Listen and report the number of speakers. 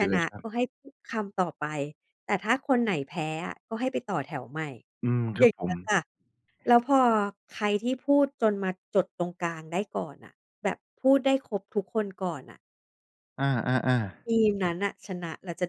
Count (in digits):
2